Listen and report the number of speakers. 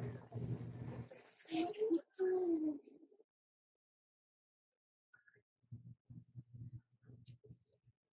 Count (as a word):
zero